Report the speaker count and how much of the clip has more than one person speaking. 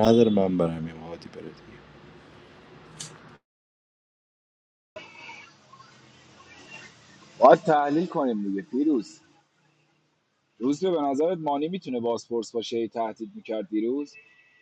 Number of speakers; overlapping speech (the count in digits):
2, no overlap